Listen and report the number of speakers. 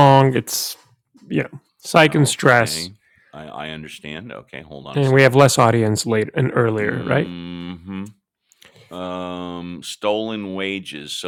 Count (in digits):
2